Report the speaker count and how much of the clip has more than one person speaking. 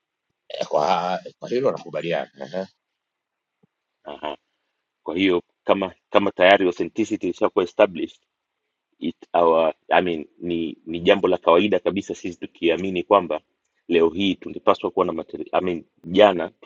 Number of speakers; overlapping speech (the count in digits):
2, no overlap